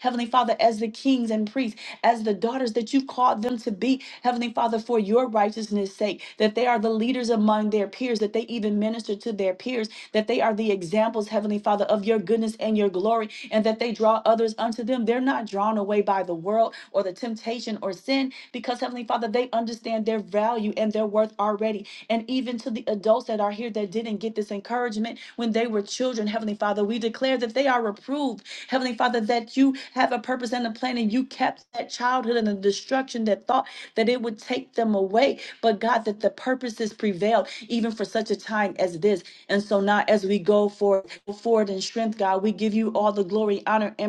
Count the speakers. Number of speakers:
1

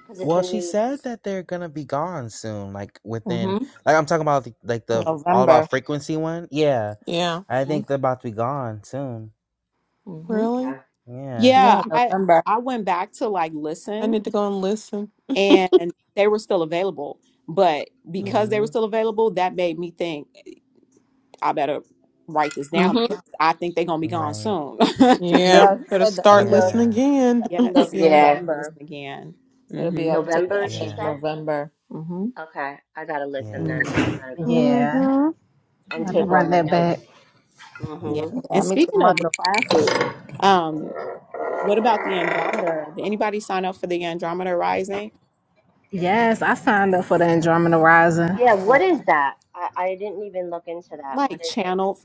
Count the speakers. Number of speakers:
6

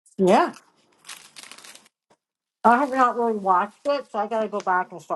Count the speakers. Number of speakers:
1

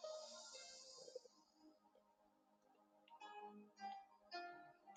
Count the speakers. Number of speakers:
0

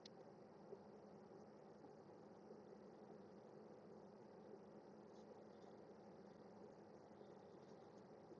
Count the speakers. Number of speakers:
0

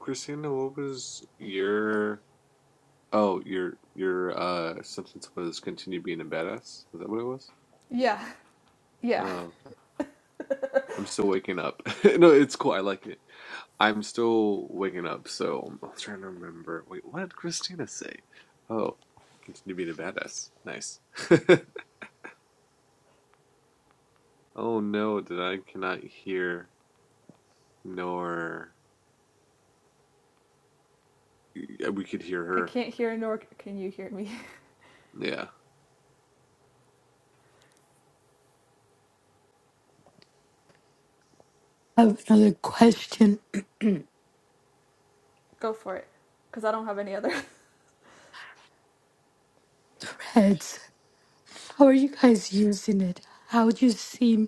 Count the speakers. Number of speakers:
3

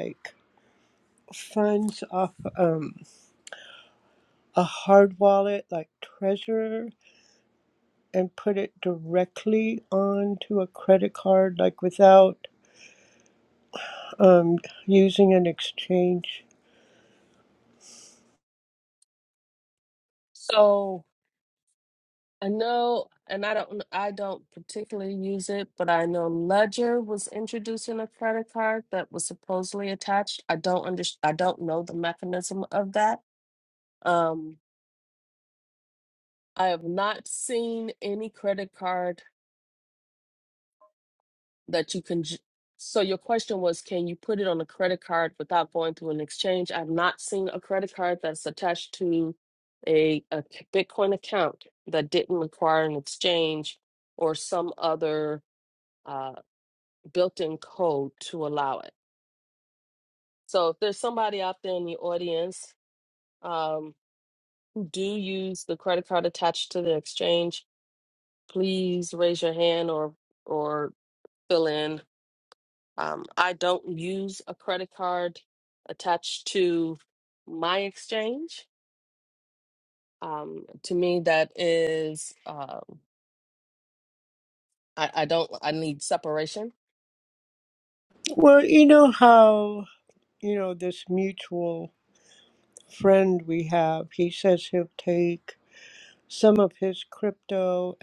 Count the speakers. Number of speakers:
2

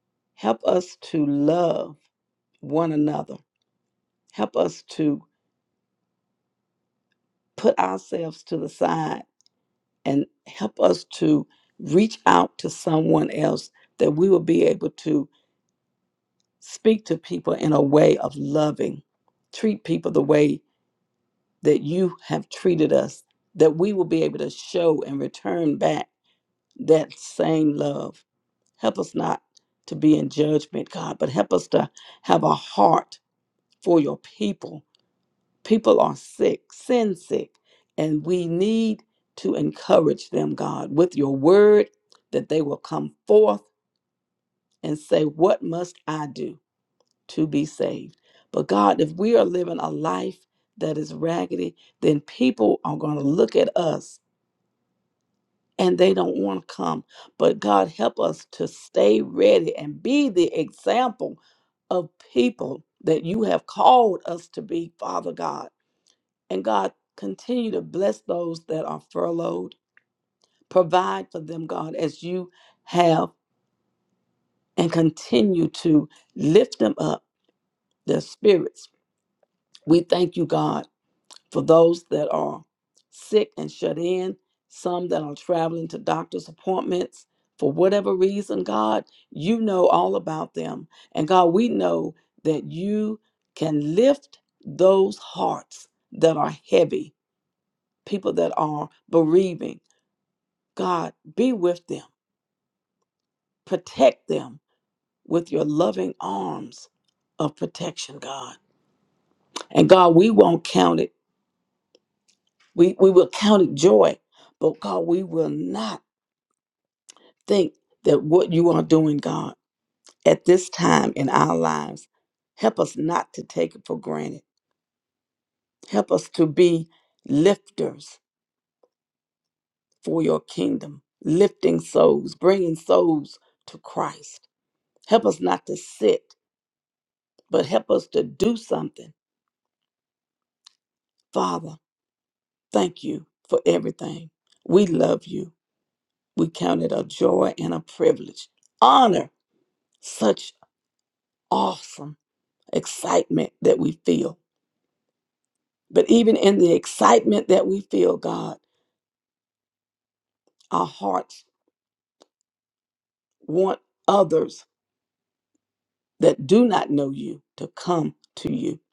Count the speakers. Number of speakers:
1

